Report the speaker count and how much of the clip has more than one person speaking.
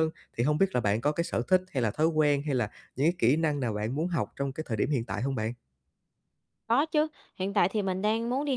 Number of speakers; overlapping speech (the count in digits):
2, no overlap